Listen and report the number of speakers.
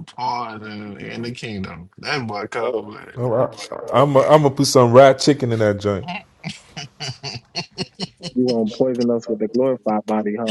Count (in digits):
3